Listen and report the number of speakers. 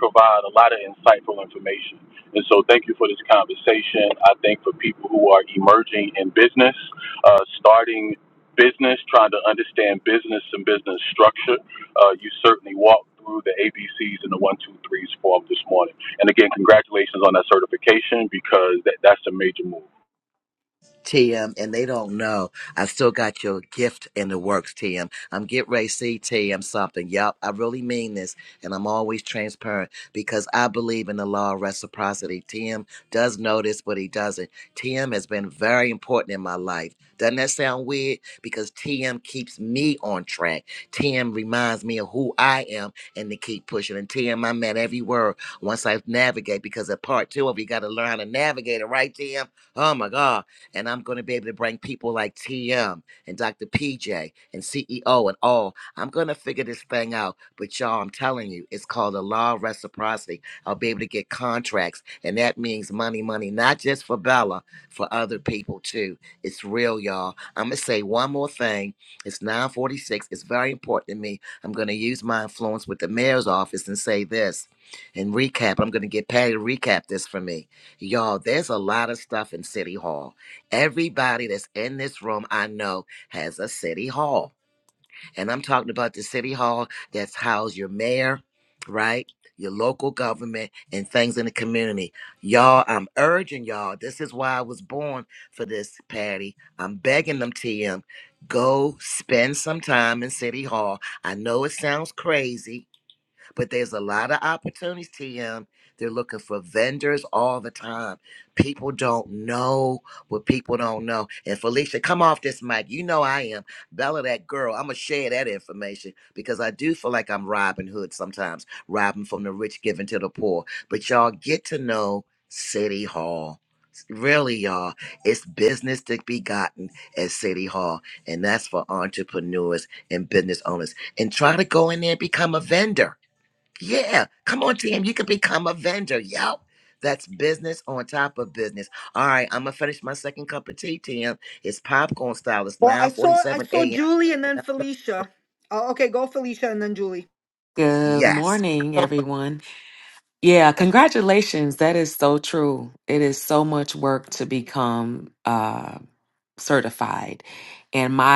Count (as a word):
four